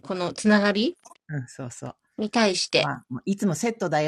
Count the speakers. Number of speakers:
2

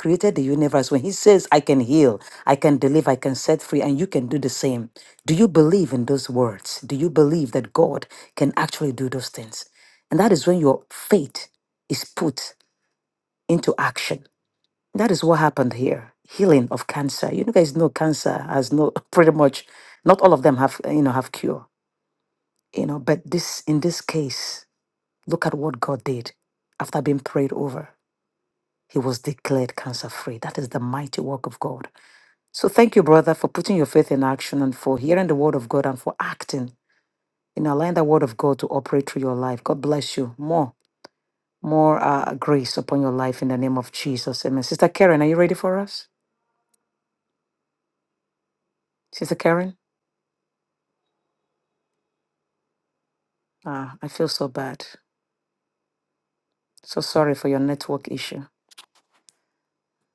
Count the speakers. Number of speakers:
1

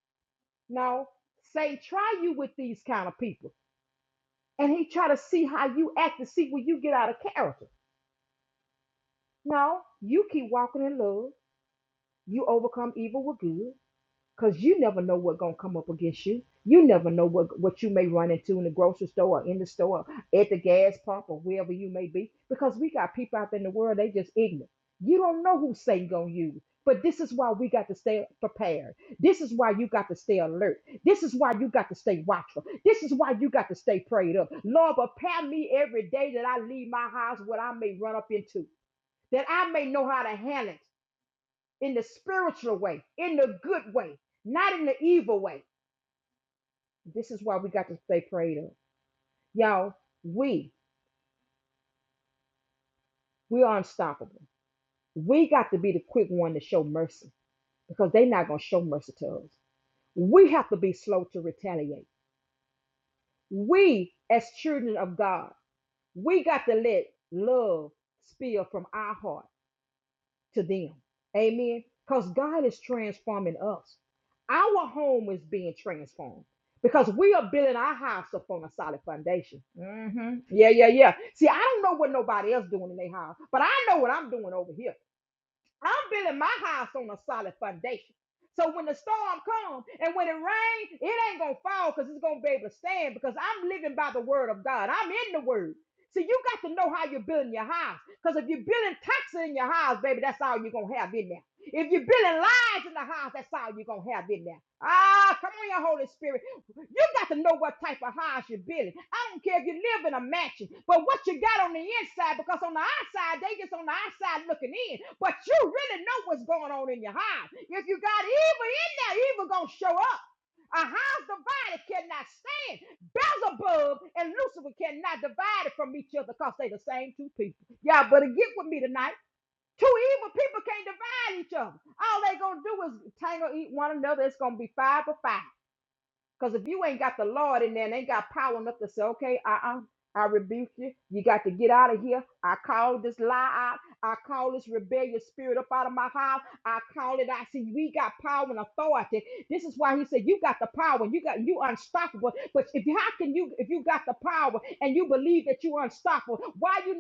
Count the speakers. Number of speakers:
1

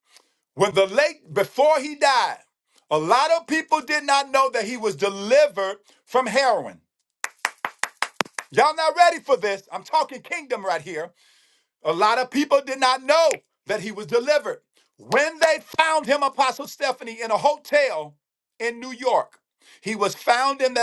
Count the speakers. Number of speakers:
1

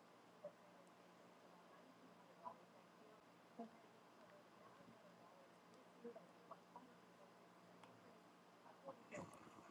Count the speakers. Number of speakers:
0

